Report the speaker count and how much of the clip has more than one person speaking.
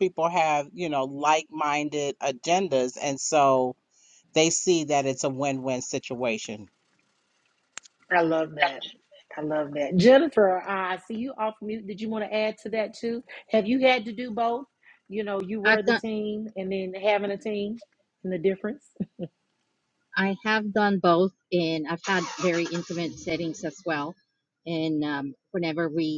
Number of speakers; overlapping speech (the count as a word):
three, about 1%